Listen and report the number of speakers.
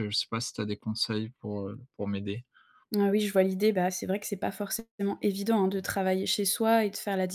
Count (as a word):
two